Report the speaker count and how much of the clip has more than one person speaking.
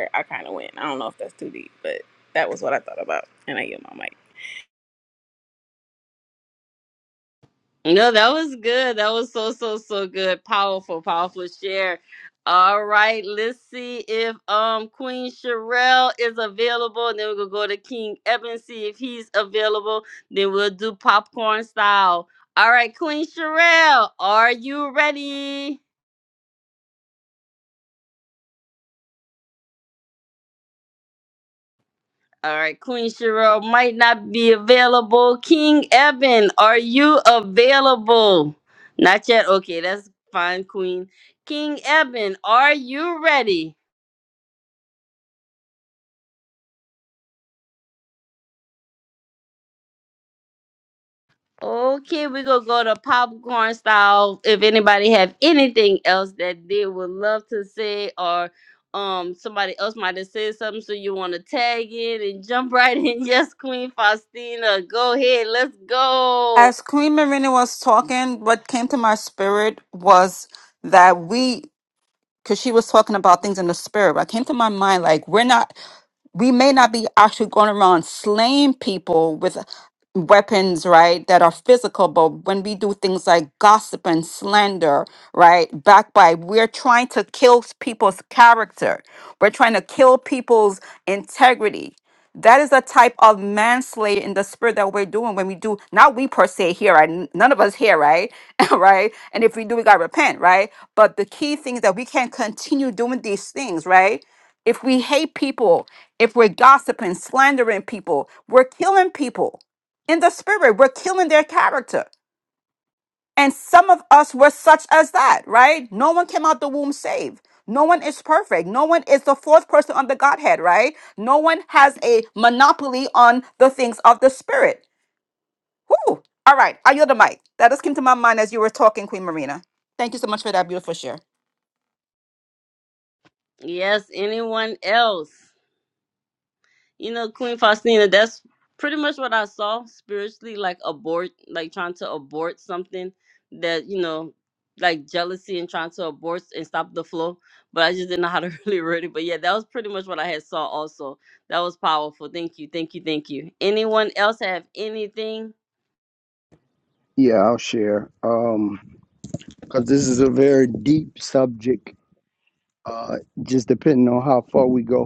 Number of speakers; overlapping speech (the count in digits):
4, under 1%